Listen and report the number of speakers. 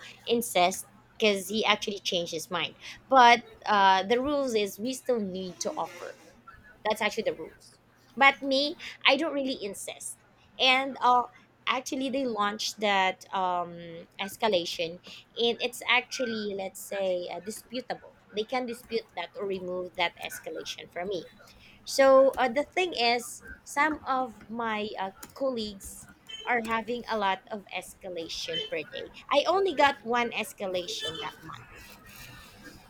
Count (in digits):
1